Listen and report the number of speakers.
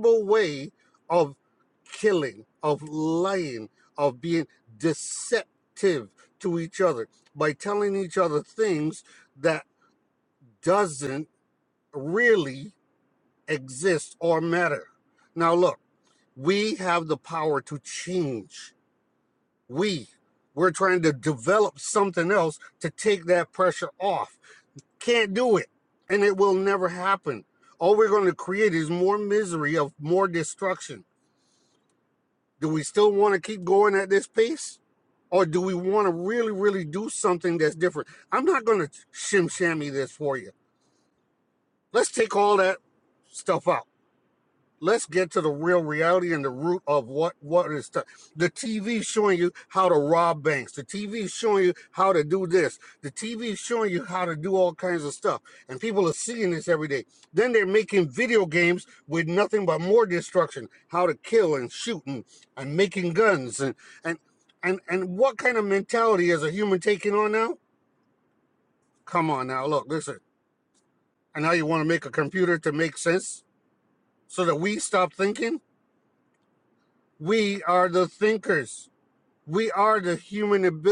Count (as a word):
one